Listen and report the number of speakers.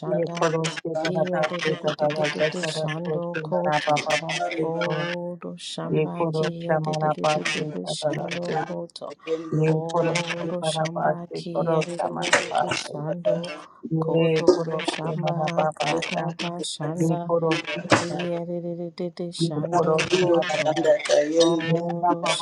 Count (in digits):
3